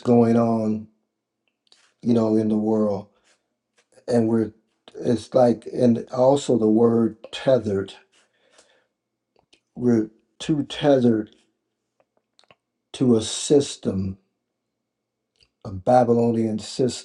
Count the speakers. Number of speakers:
one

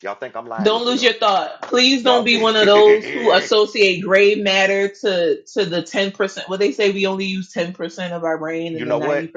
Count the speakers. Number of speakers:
two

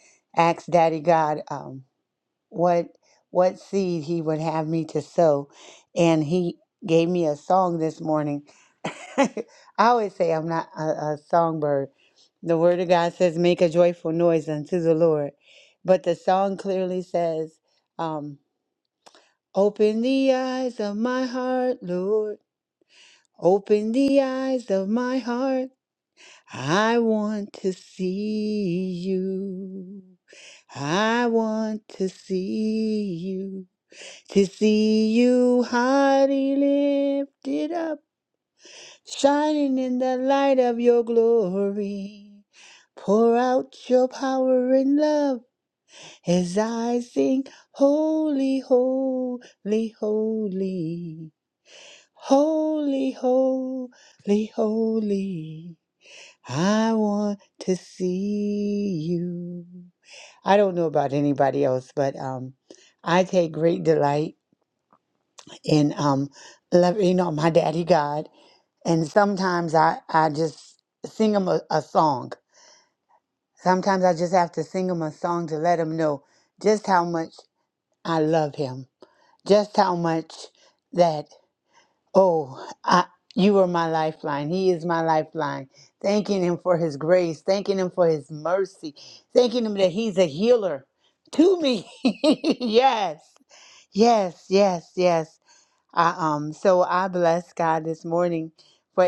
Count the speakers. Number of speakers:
one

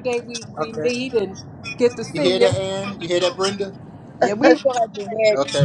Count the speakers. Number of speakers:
three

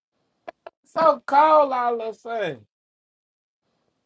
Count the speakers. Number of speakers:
one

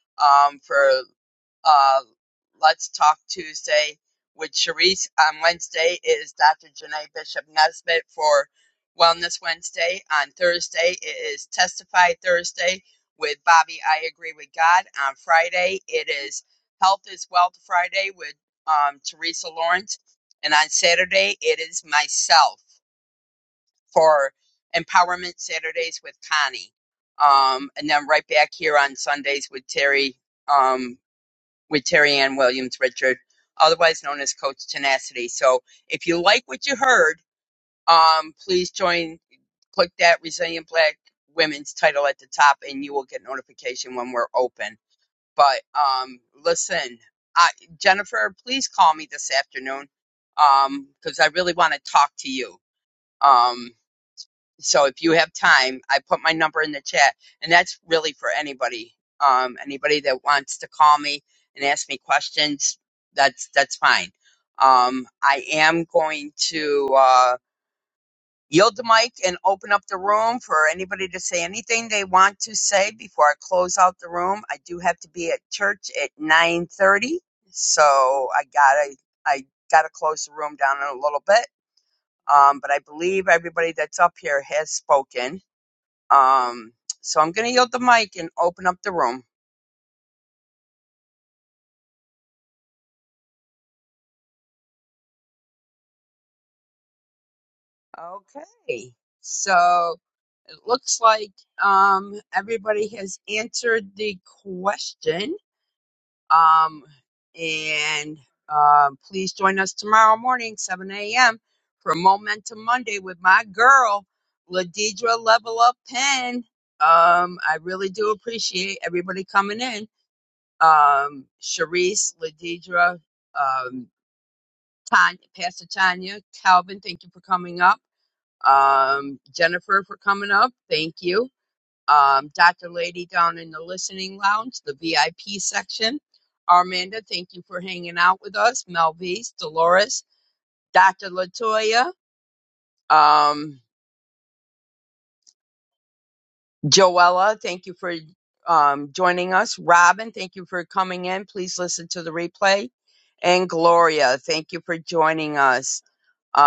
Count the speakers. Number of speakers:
one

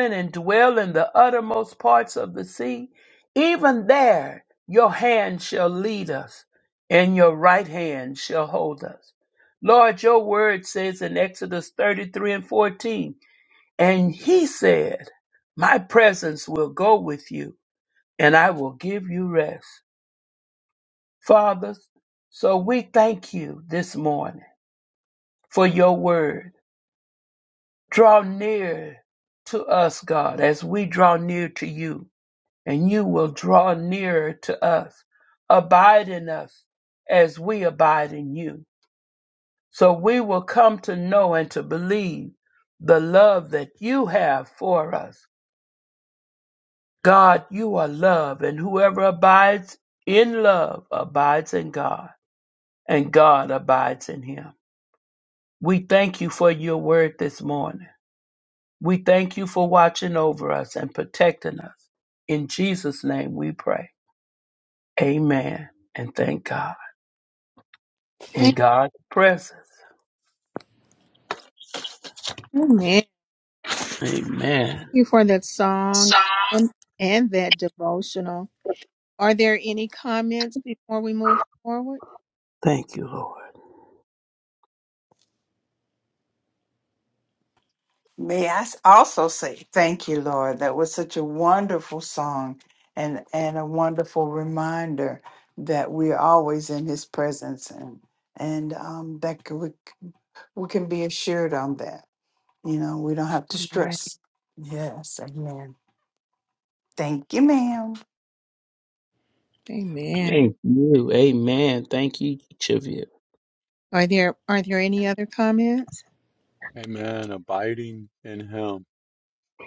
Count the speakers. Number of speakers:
four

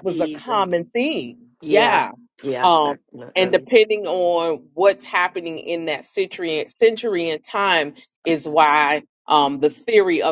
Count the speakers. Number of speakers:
two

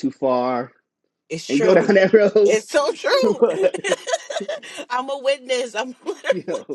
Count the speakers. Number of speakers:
two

